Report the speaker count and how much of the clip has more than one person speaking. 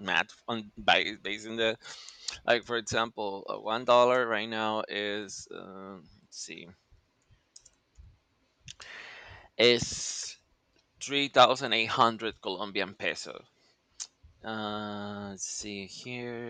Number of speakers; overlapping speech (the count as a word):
one, no overlap